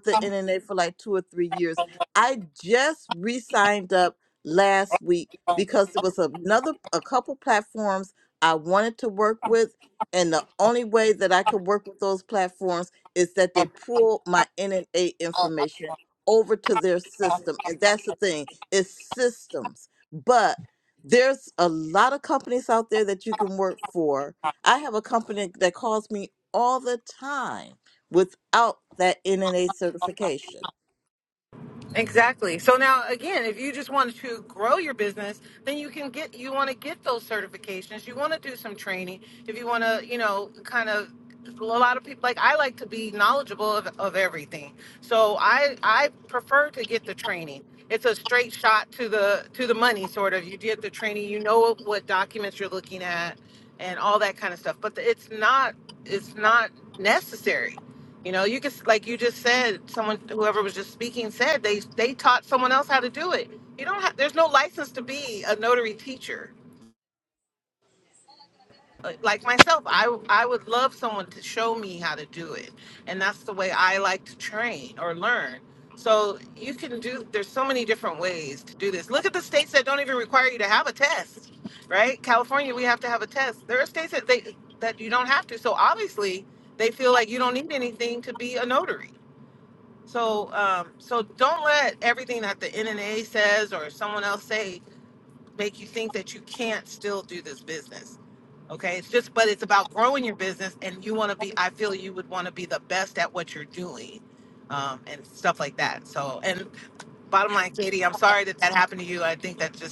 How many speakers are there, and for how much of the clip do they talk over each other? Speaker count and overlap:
2, no overlap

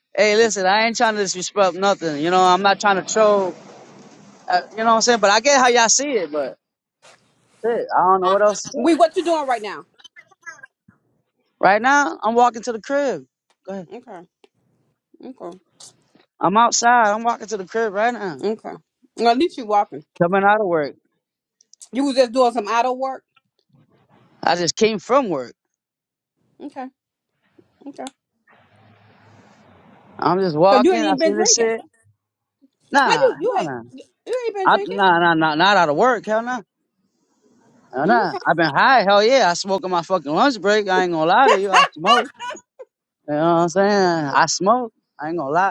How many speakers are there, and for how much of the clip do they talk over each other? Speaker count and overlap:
2, about 6%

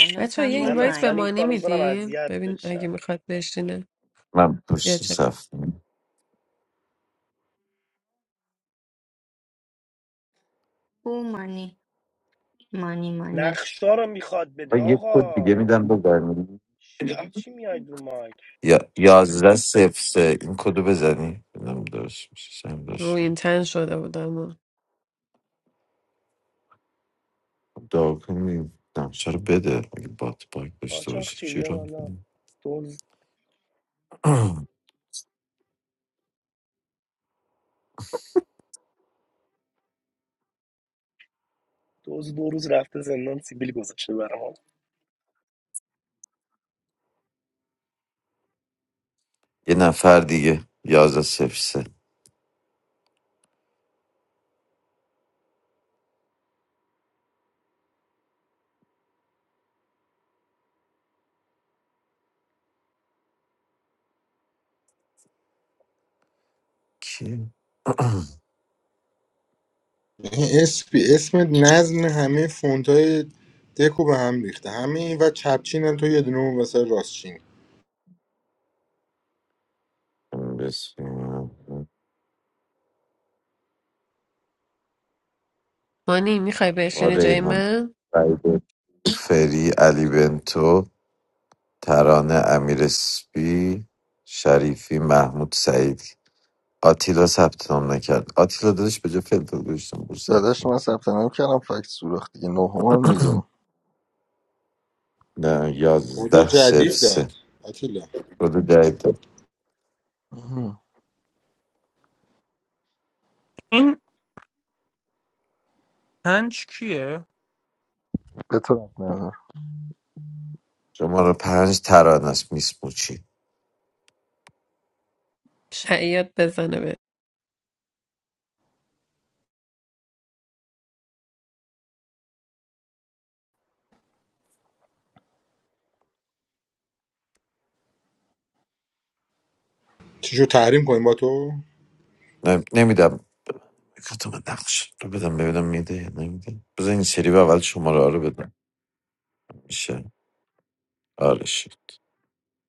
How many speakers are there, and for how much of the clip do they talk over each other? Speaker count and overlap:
7, about 5%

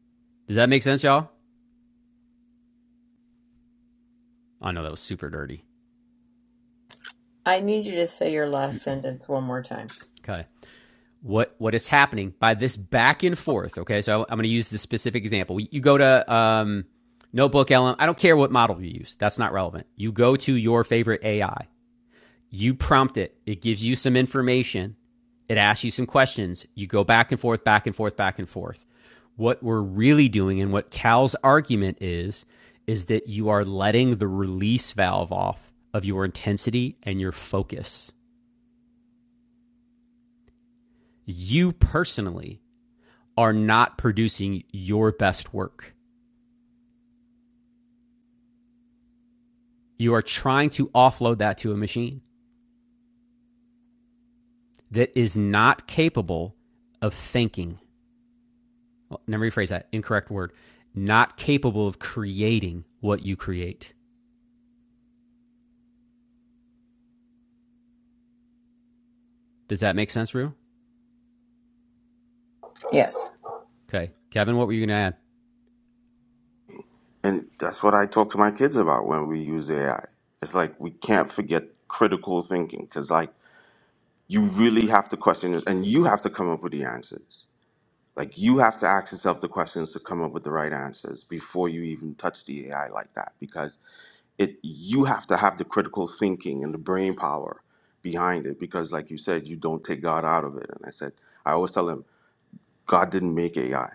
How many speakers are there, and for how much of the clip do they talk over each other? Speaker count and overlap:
3, no overlap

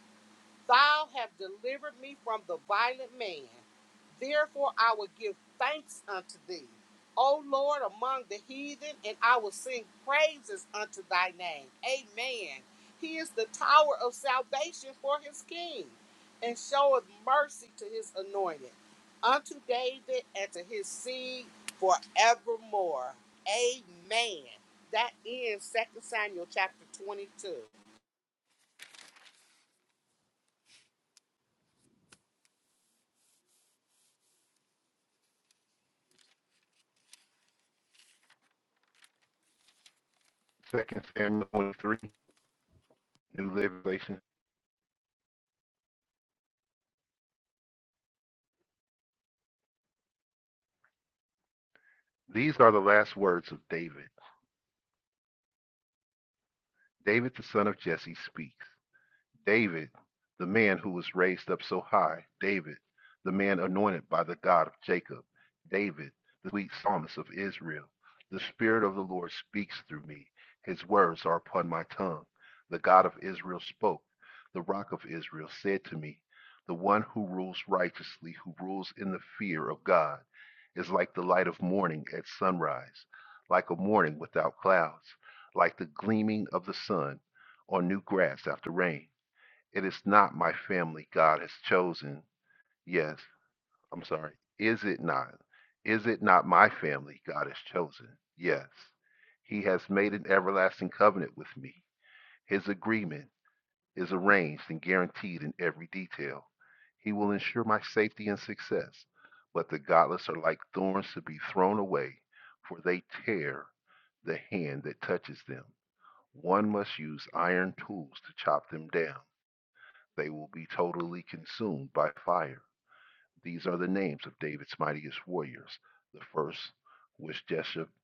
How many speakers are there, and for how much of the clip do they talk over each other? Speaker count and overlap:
2, no overlap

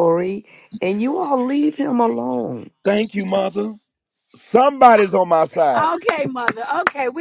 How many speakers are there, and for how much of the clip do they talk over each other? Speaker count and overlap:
3, no overlap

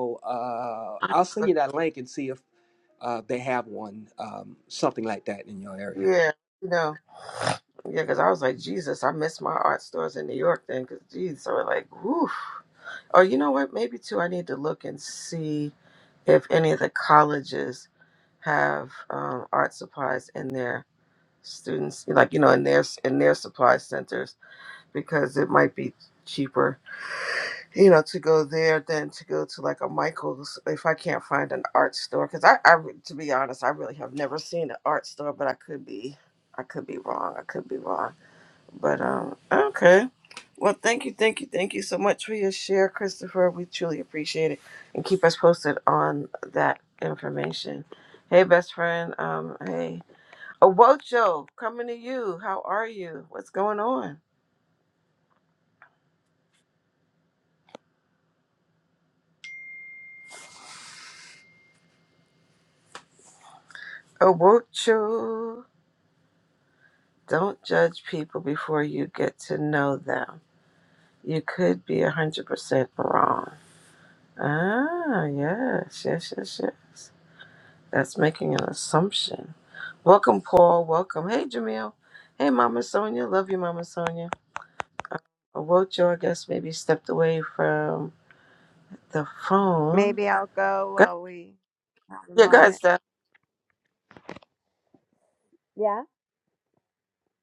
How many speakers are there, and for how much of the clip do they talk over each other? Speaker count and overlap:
3, about 1%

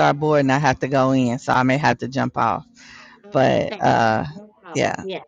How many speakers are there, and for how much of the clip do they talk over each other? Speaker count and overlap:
2, about 16%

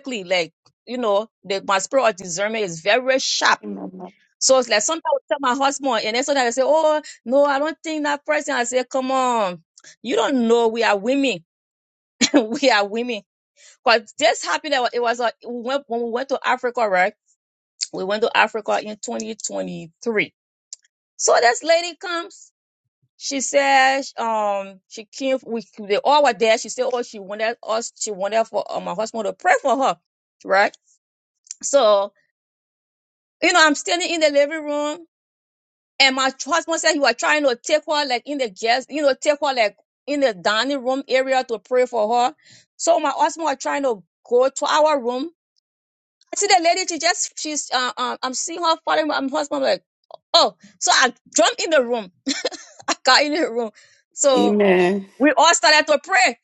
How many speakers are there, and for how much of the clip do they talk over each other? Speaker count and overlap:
2, under 1%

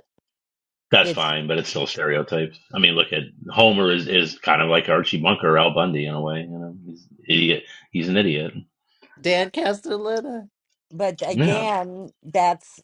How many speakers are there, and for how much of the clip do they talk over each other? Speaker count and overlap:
3, about 5%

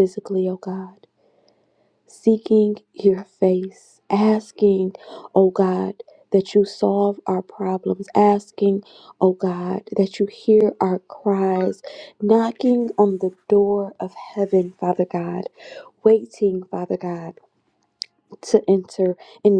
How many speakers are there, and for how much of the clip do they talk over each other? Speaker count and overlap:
1, no overlap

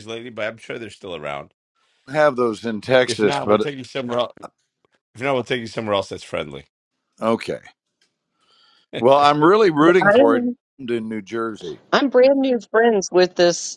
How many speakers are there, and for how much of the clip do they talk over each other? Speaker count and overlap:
3, about 7%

